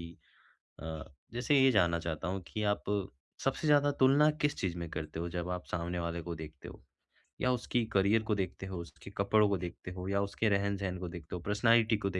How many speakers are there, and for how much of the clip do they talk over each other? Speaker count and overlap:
one, no overlap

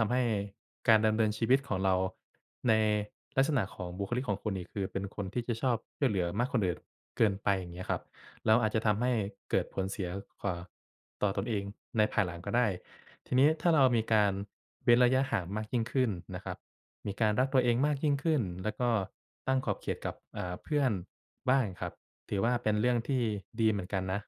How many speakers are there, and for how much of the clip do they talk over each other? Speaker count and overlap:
one, no overlap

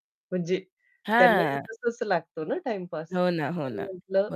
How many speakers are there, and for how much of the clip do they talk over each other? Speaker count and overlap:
two, about 19%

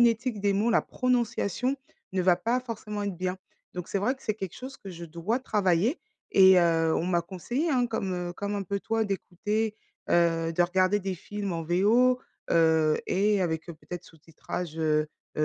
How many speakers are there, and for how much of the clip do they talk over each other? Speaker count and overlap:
one, no overlap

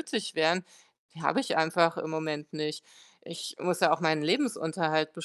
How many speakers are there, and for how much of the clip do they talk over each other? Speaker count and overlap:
one, no overlap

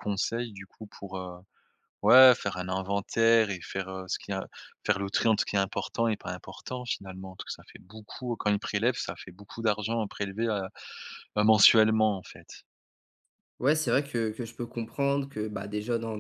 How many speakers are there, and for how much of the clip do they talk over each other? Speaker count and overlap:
two, no overlap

